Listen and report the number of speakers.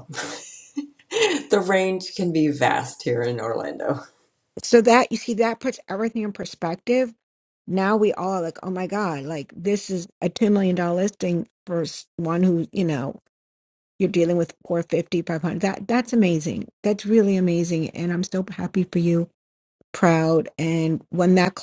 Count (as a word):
two